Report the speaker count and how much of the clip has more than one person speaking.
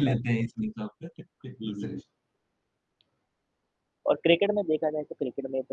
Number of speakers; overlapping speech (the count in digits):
2, about 9%